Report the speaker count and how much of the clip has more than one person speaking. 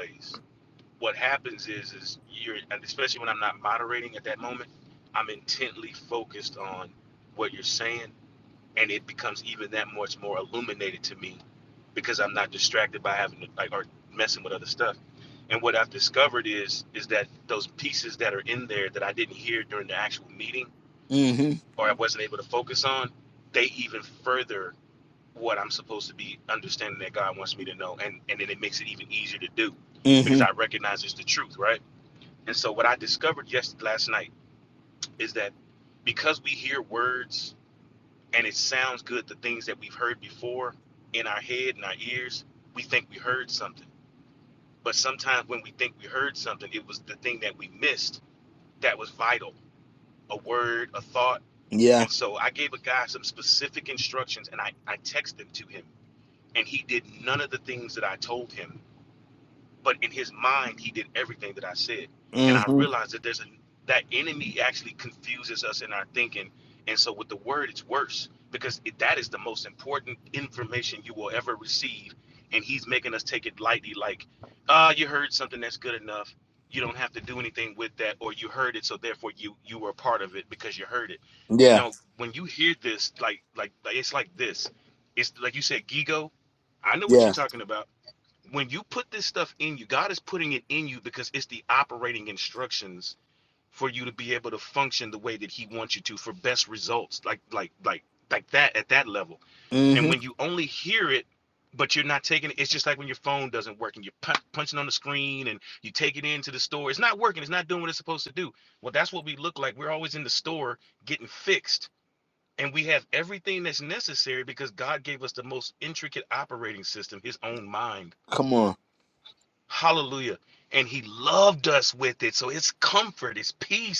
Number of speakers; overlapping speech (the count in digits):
2, about 1%